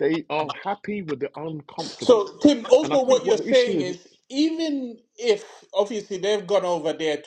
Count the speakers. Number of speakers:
two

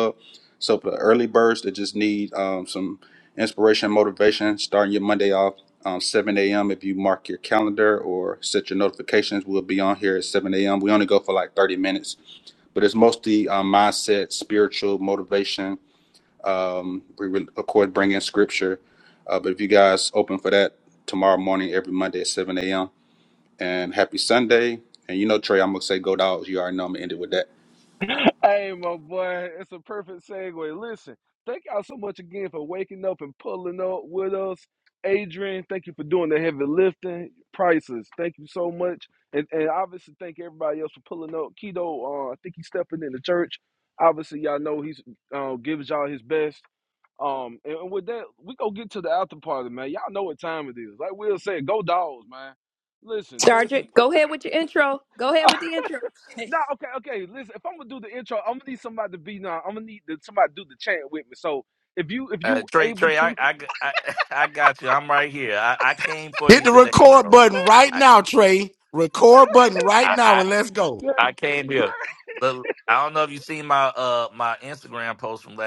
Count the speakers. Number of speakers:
five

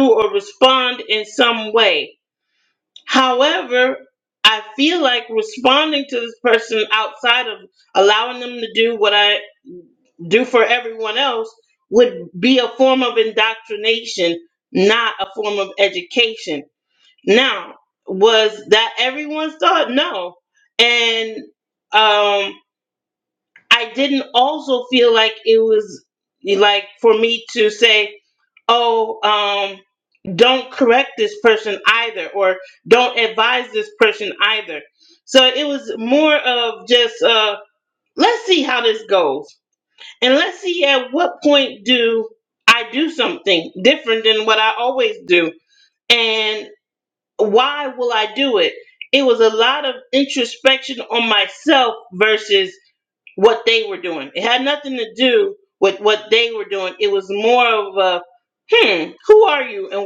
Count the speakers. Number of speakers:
one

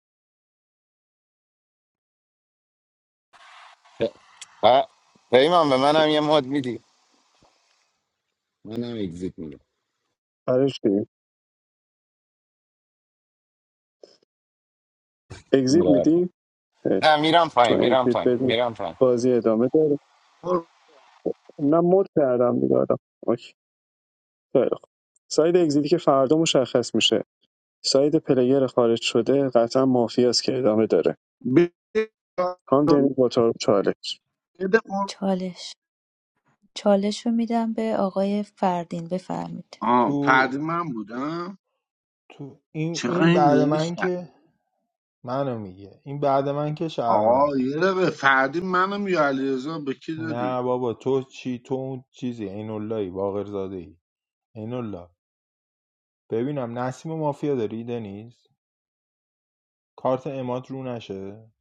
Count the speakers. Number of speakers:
five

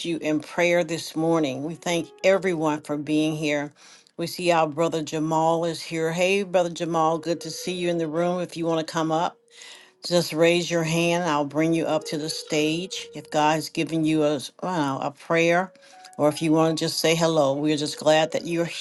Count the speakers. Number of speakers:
one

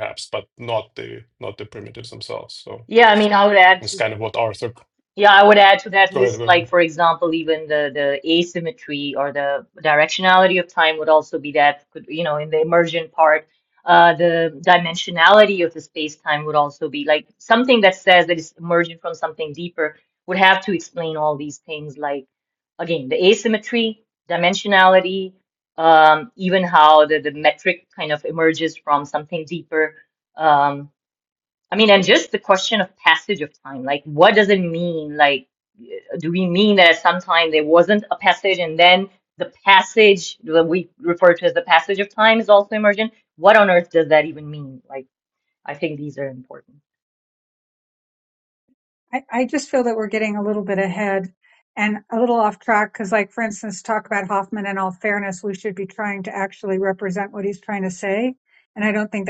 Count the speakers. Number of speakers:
three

